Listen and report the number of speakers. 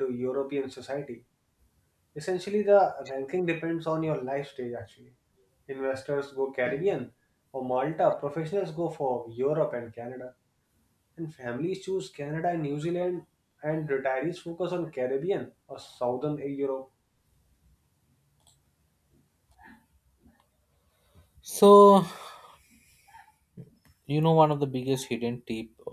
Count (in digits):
2